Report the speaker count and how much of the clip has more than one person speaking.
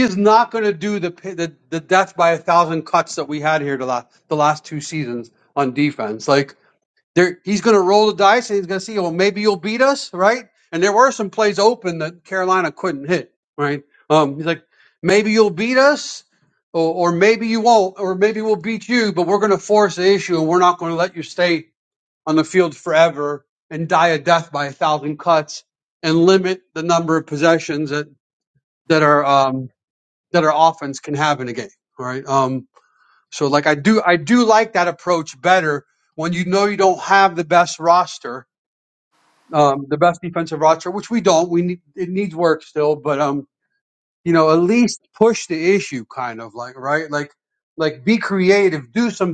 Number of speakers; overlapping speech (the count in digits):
1, no overlap